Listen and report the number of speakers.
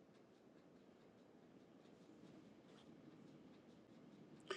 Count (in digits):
0